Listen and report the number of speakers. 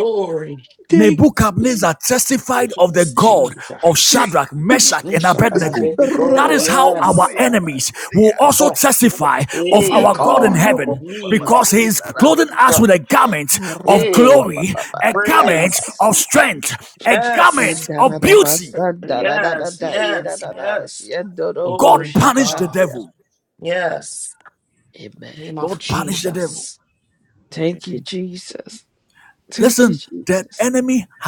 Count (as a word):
three